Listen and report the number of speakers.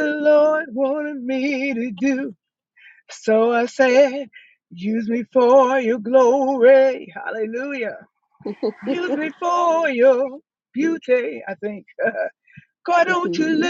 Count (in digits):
1